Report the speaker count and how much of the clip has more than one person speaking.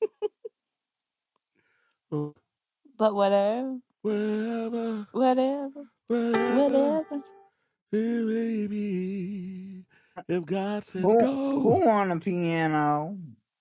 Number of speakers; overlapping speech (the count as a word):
three, about 10%